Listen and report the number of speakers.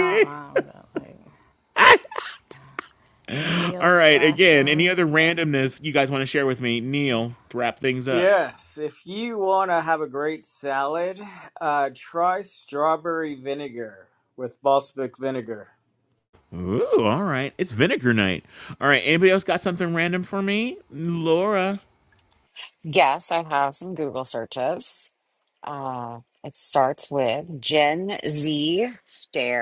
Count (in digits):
4